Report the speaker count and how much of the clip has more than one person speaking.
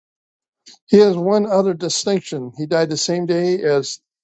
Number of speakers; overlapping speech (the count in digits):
1, no overlap